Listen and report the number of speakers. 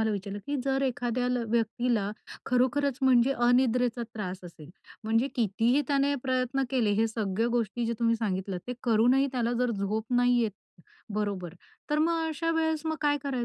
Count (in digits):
1